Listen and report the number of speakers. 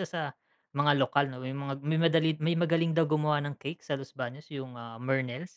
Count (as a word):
one